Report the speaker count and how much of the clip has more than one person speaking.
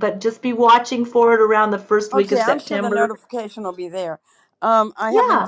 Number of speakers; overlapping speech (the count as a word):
two, about 26%